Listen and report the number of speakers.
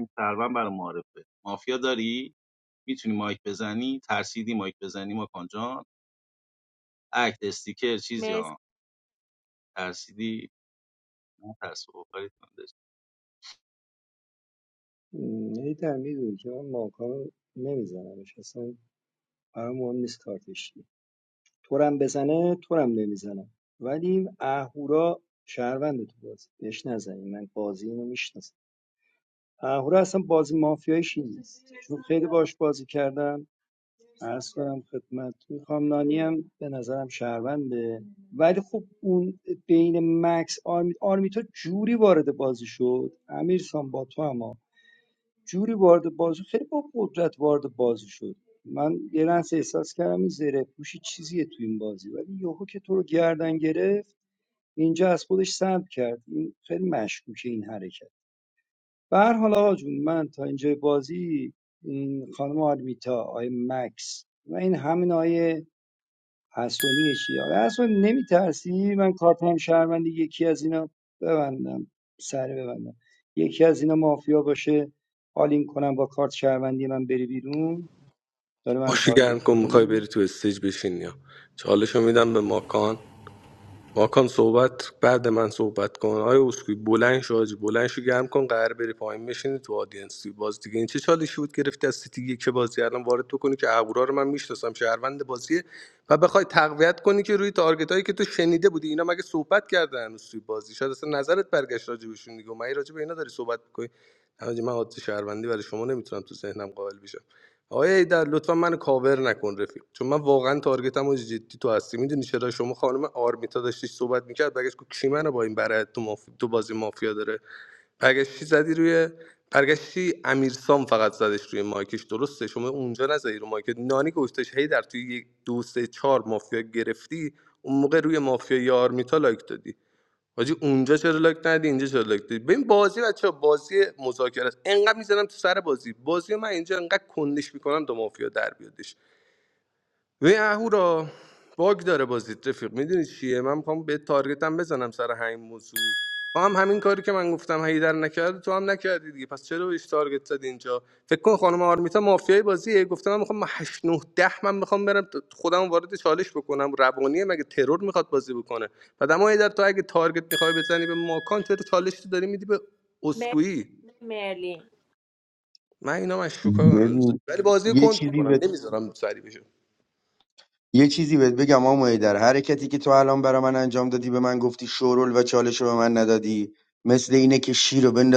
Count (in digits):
5